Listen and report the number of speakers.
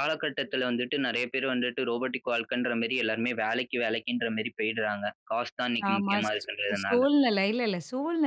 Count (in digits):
2